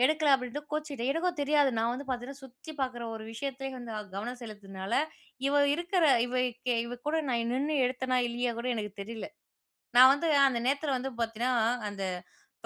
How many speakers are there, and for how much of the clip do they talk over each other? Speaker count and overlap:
1, no overlap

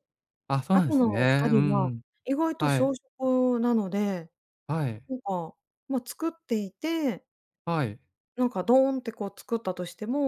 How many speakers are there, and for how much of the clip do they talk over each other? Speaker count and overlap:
2, about 14%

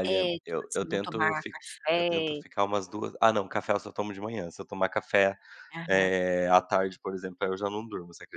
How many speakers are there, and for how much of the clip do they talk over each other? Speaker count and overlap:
2, about 21%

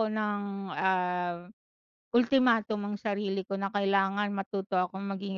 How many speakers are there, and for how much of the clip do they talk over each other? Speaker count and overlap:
1, no overlap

